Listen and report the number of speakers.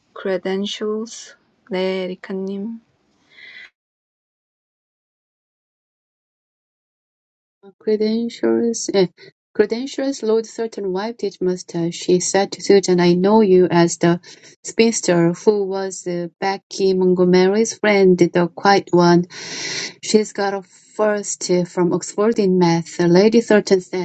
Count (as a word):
two